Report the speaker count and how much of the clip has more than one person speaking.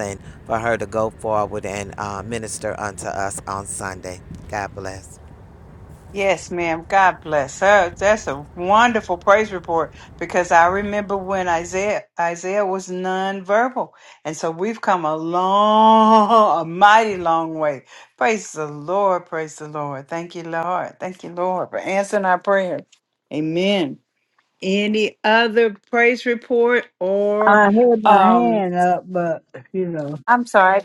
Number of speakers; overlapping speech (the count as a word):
three, about 3%